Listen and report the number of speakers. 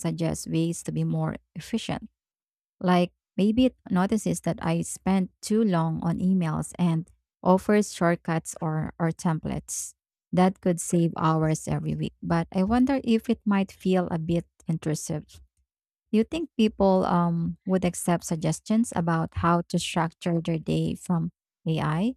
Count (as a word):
one